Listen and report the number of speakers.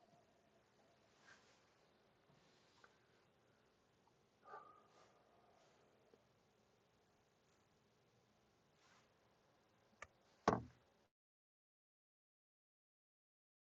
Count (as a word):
zero